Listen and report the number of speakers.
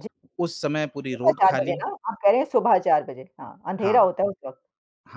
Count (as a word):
two